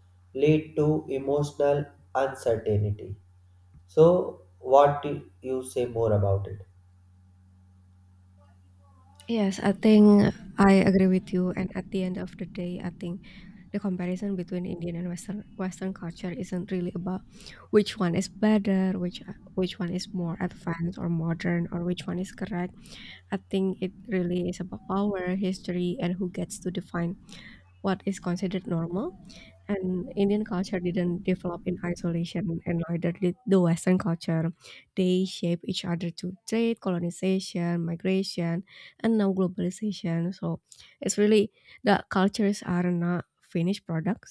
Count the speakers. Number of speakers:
two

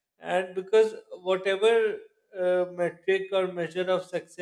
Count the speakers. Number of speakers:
one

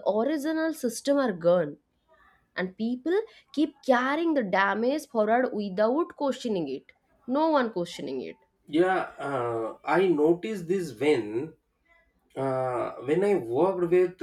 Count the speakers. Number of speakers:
two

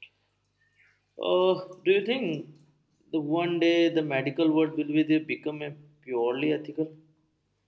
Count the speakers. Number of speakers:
one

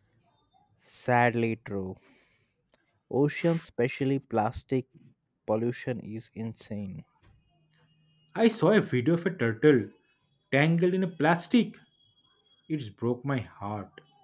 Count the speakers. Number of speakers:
two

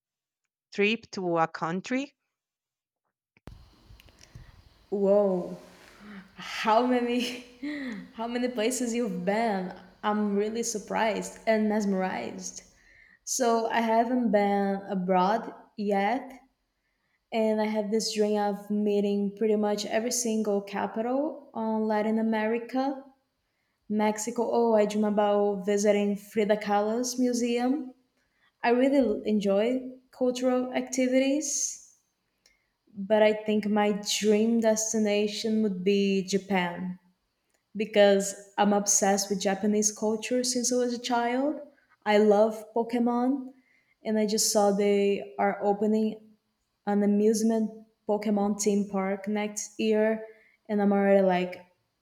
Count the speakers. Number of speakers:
two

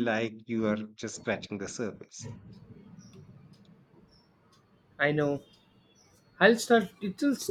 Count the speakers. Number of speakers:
two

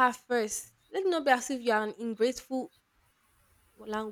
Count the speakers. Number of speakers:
one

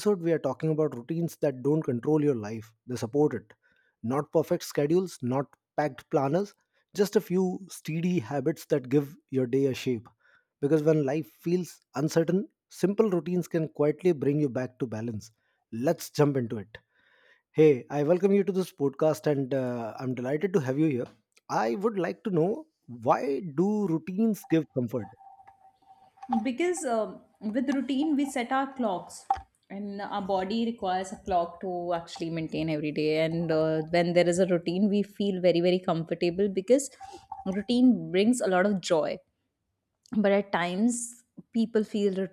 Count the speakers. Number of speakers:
two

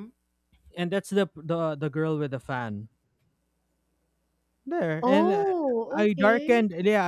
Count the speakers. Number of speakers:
two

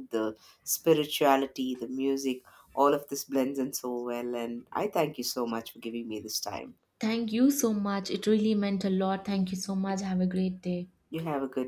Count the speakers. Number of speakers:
two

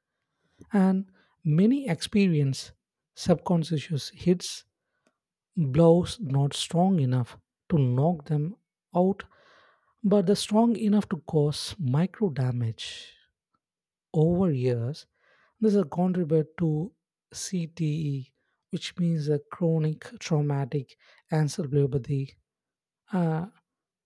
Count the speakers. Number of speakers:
one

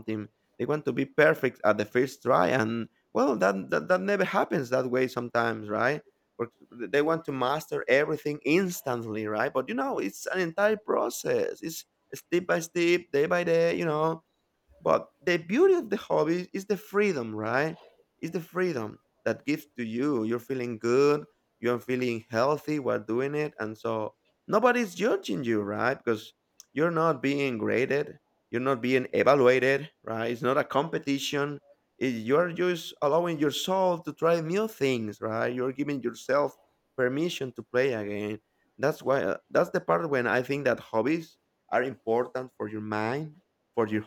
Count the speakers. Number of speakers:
one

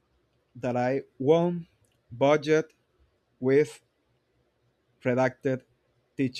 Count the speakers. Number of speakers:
one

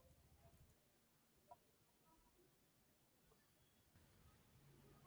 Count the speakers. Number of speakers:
zero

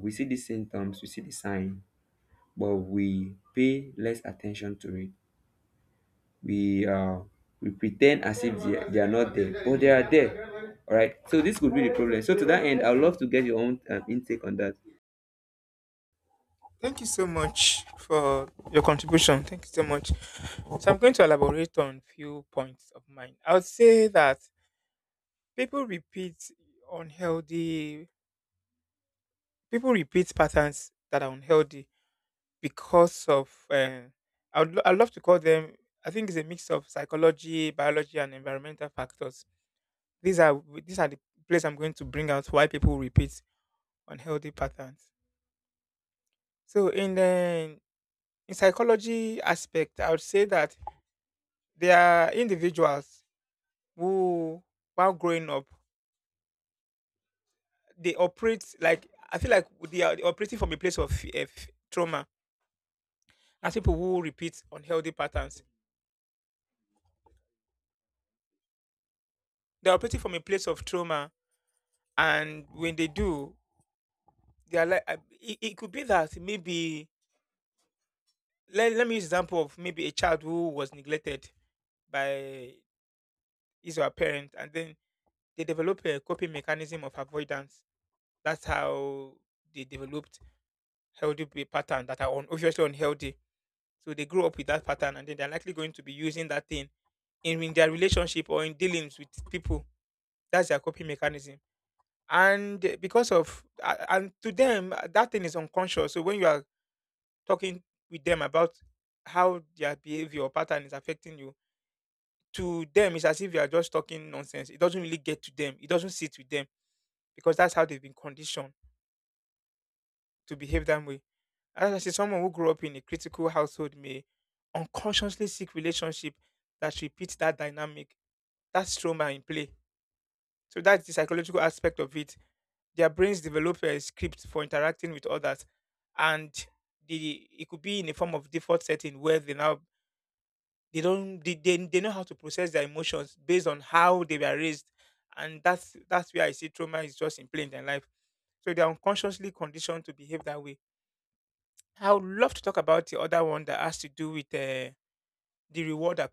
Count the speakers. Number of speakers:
two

